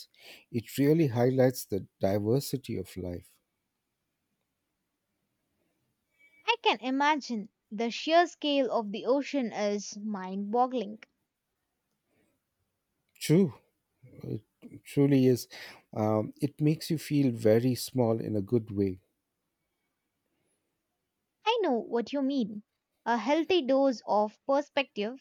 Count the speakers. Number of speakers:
two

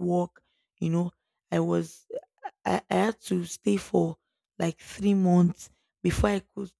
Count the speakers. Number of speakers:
one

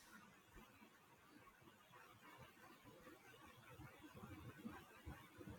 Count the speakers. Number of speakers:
zero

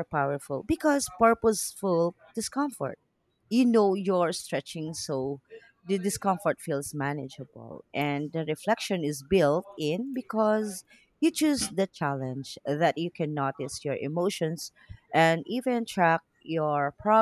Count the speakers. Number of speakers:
one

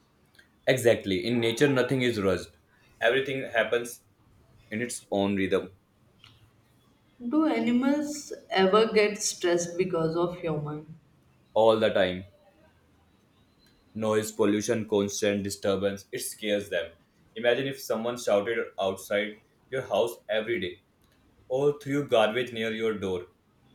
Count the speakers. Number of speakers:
two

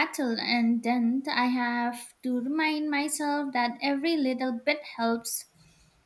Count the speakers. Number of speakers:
one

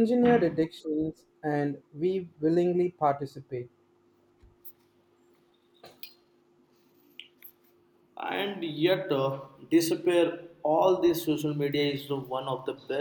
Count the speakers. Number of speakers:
two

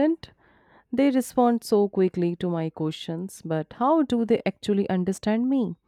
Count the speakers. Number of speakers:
one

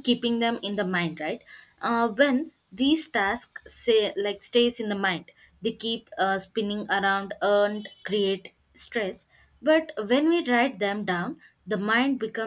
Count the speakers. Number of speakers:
one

